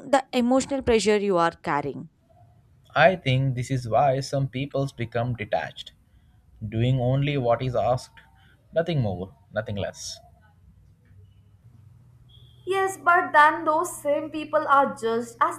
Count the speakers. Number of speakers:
3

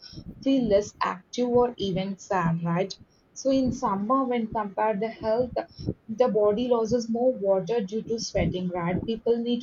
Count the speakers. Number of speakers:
1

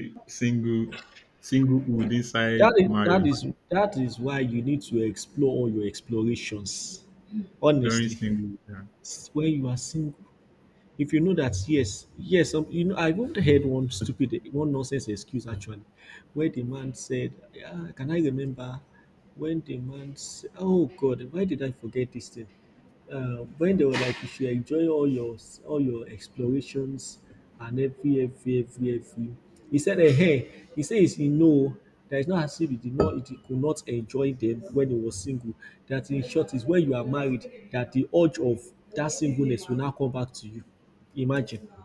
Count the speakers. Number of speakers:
2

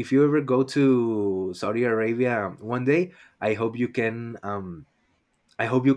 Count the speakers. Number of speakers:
1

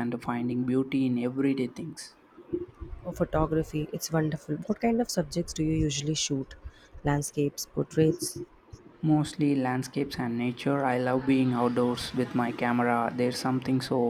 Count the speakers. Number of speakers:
2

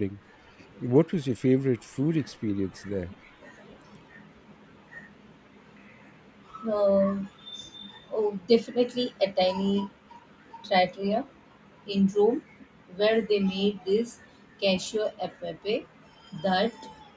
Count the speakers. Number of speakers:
2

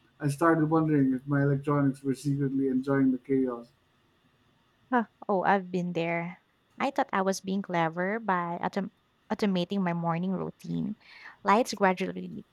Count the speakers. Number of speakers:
2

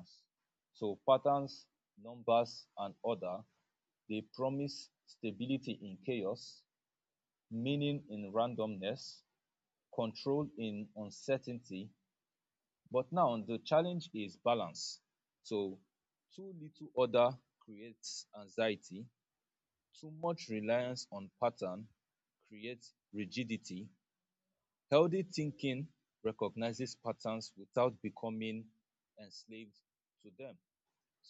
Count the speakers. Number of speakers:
1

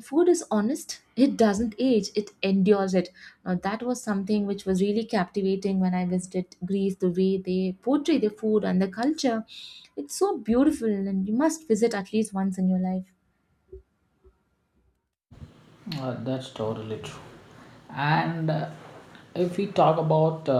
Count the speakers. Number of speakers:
2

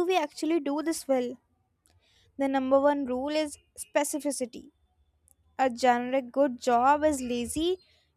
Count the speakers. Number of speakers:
1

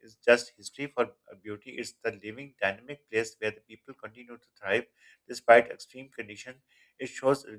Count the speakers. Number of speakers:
1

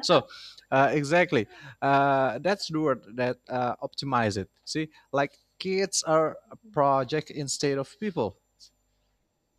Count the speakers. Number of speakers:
1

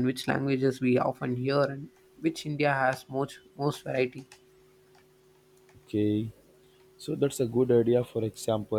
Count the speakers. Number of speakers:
2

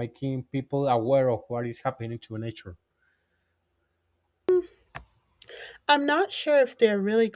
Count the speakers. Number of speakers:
2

